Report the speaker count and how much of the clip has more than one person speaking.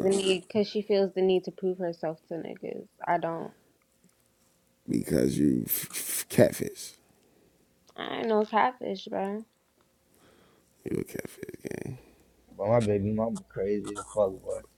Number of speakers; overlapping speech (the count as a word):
three, about 1%